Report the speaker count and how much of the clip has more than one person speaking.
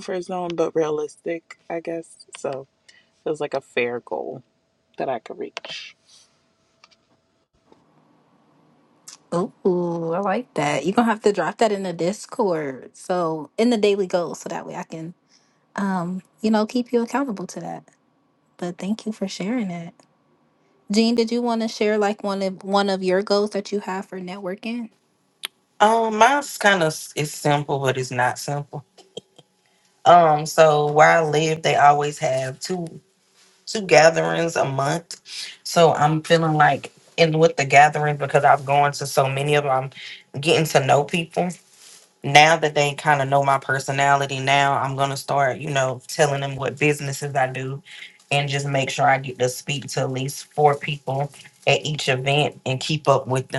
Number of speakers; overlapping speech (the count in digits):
3, no overlap